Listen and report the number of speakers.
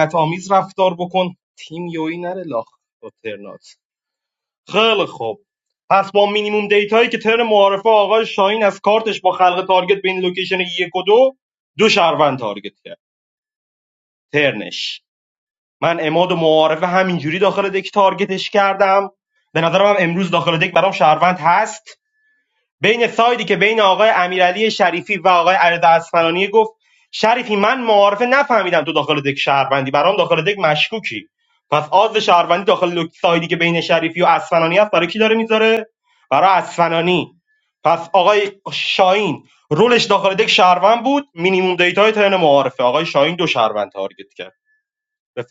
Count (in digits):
1